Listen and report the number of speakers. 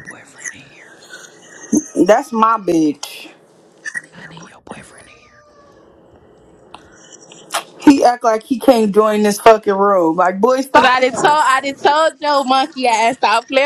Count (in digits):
3